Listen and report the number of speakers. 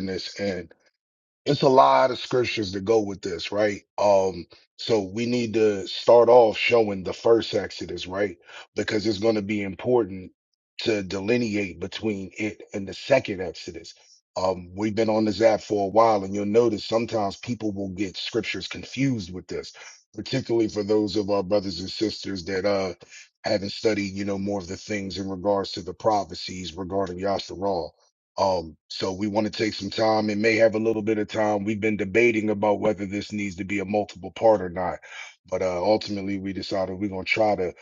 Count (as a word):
one